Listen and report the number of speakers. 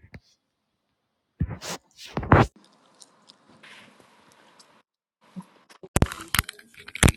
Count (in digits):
0